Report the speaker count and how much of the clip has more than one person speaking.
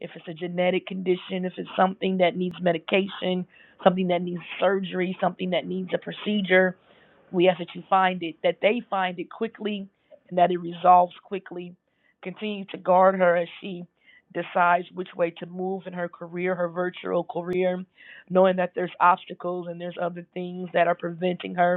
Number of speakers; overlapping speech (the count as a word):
one, no overlap